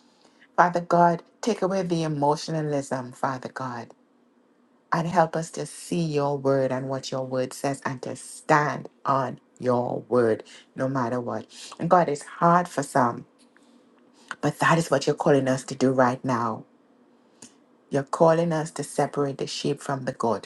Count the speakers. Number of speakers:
one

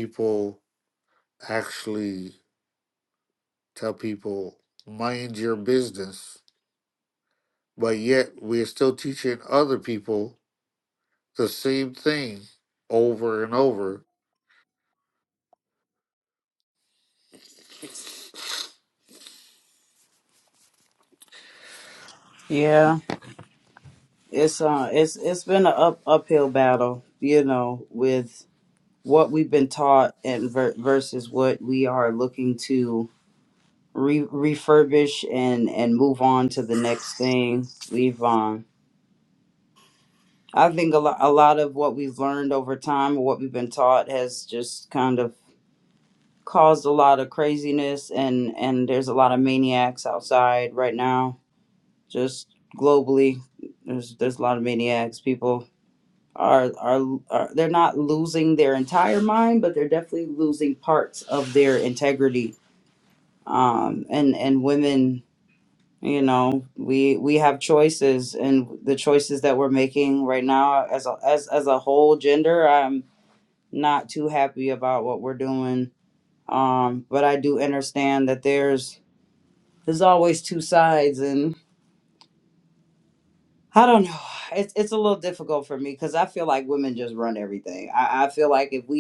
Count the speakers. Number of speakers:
two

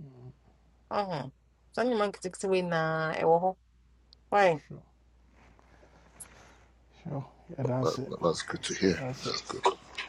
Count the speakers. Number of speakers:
three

